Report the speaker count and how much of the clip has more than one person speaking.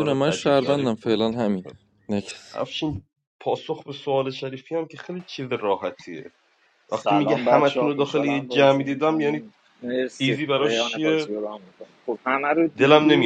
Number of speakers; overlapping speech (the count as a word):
three, about 37%